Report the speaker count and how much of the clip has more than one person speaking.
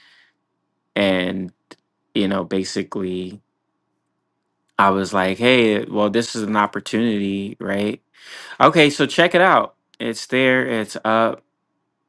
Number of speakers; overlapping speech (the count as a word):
one, no overlap